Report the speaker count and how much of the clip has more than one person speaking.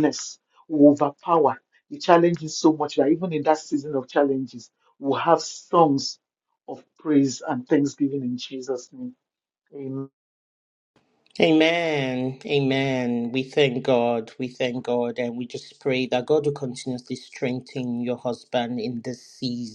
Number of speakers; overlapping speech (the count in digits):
2, no overlap